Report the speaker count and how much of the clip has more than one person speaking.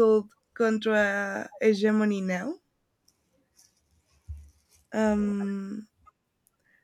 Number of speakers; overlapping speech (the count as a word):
one, no overlap